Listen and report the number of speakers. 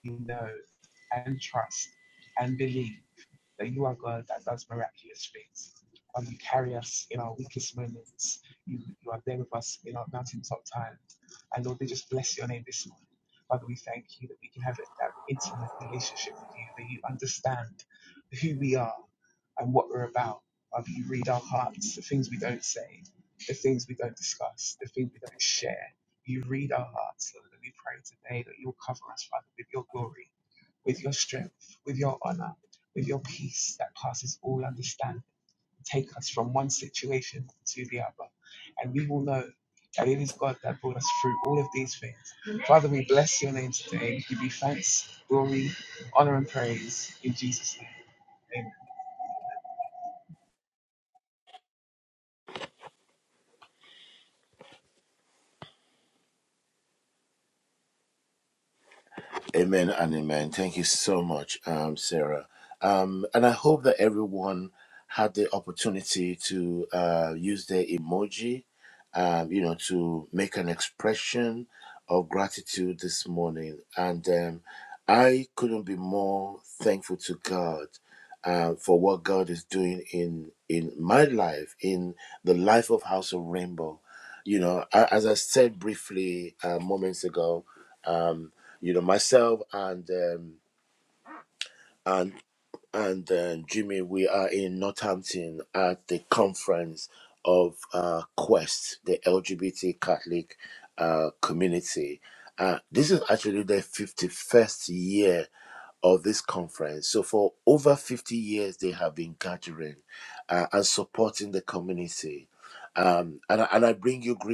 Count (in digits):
2